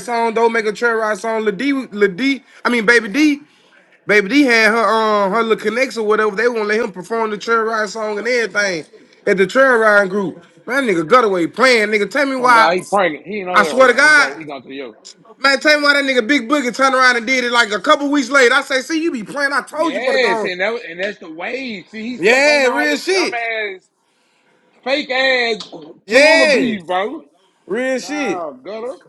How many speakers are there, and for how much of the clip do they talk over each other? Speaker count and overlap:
2, about 14%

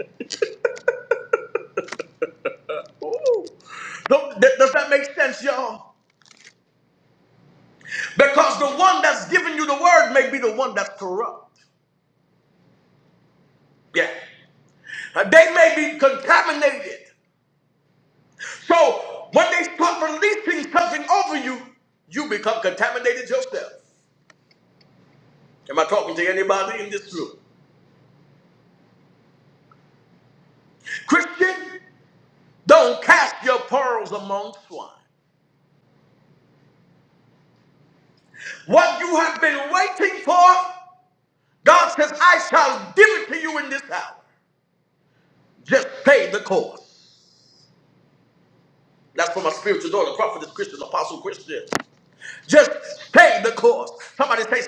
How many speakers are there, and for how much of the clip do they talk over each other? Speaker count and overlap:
1, no overlap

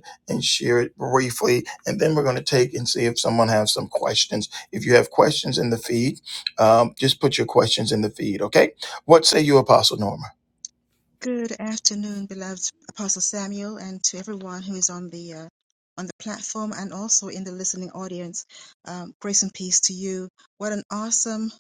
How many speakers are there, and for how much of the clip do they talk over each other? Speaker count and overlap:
2, no overlap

